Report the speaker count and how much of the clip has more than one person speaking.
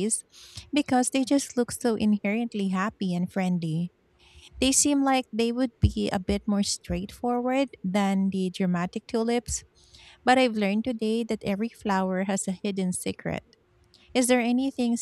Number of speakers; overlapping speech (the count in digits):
1, no overlap